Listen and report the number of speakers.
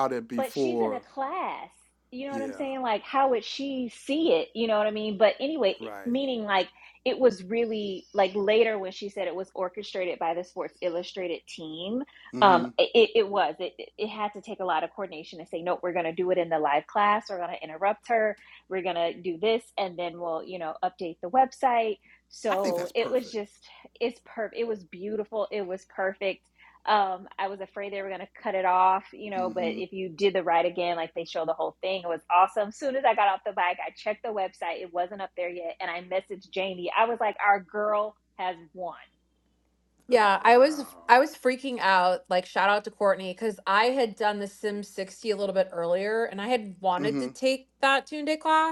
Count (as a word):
three